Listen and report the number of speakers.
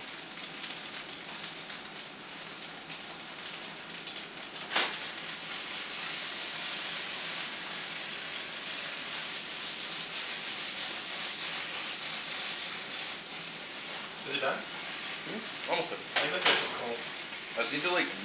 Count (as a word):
two